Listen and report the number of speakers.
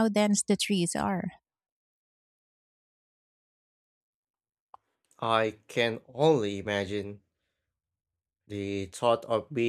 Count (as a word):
two